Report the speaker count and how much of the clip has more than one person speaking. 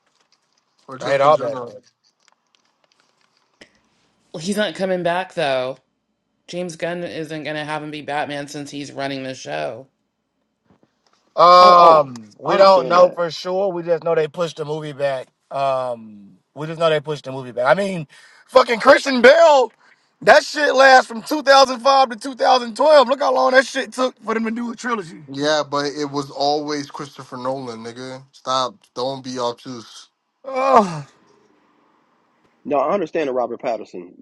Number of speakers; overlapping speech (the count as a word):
four, about 5%